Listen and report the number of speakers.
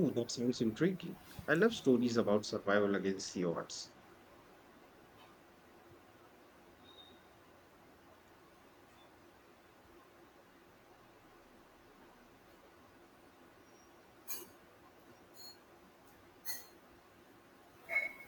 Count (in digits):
1